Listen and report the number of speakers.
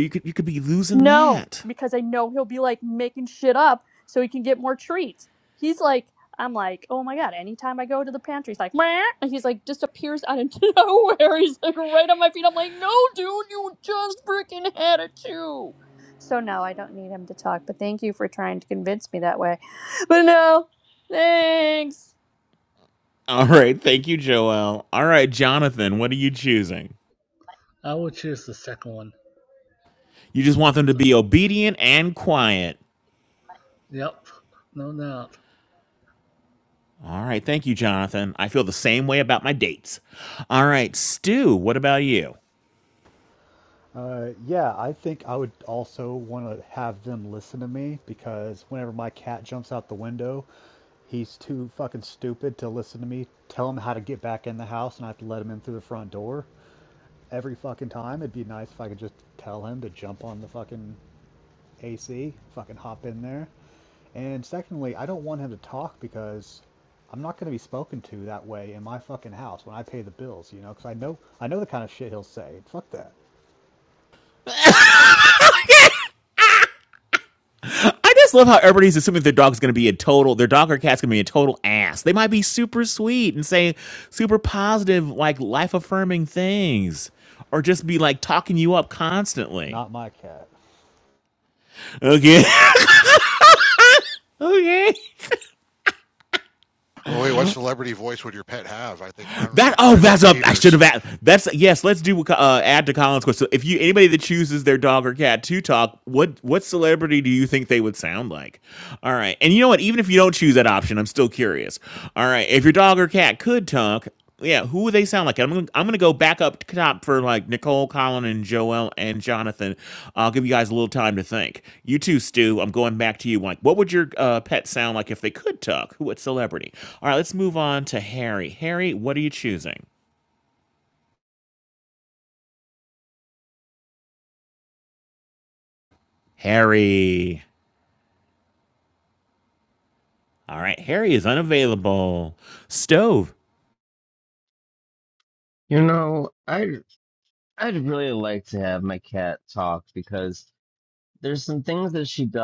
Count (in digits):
6